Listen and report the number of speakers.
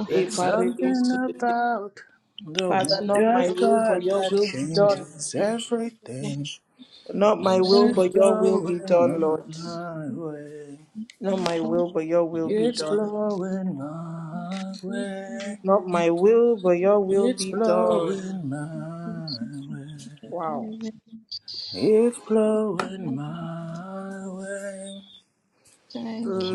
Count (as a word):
three